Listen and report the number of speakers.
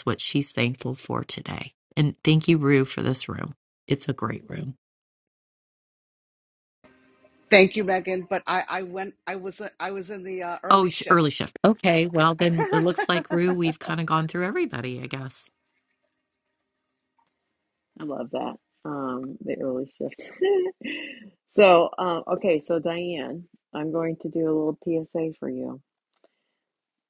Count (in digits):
3